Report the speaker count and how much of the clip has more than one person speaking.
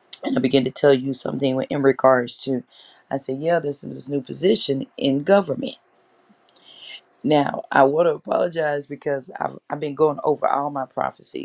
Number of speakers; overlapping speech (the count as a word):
one, no overlap